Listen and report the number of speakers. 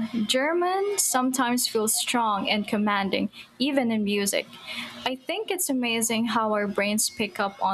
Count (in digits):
1